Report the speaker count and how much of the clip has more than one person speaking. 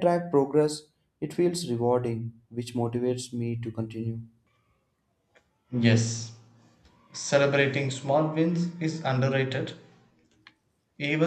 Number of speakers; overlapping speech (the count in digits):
2, no overlap